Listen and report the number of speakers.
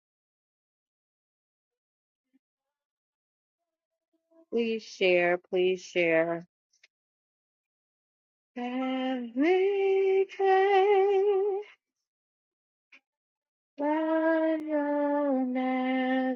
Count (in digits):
1